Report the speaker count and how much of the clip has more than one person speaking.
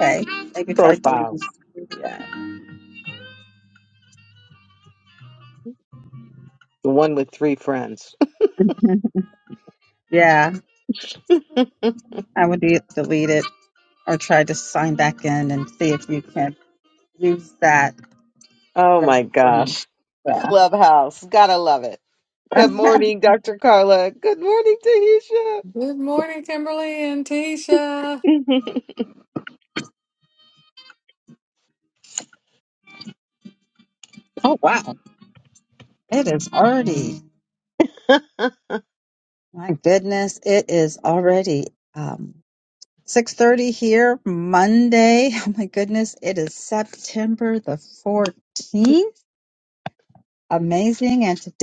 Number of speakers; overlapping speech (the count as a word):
three, about 3%